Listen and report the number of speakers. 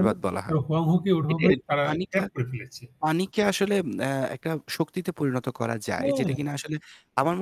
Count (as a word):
two